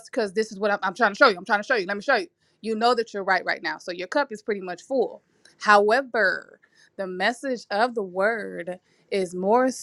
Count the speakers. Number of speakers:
one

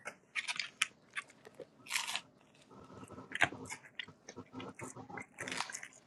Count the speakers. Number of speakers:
zero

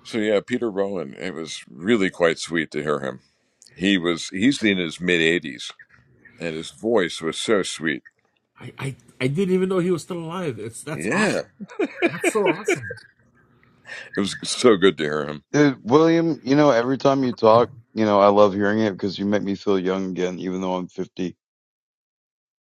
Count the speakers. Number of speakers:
three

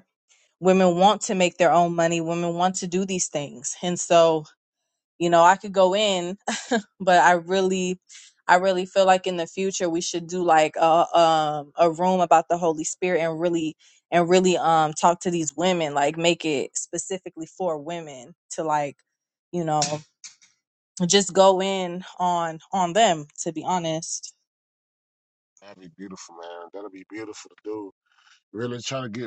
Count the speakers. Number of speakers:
two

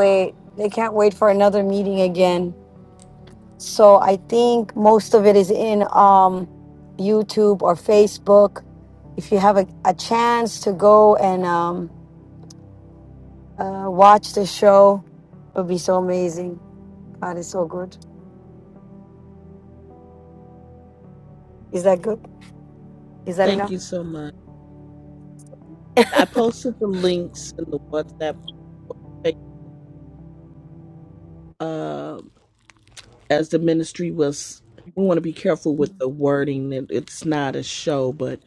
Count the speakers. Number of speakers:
two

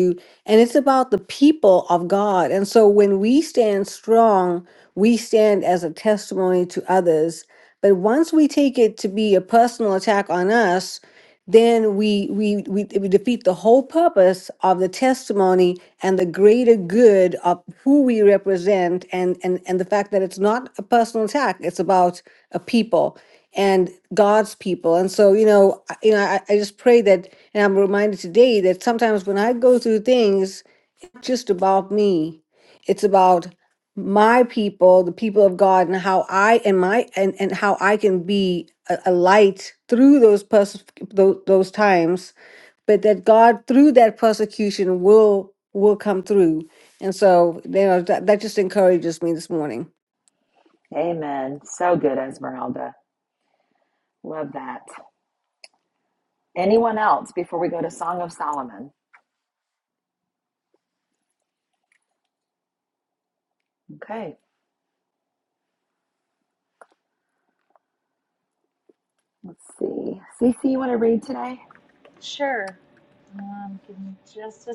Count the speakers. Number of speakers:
three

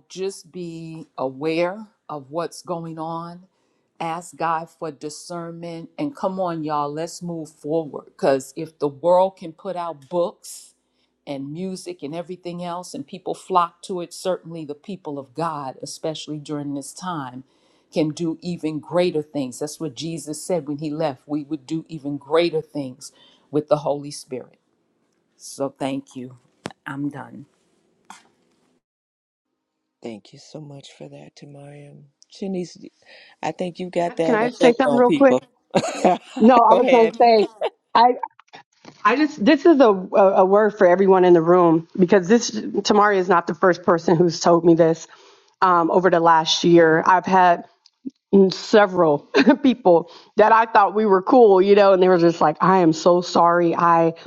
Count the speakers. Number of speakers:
three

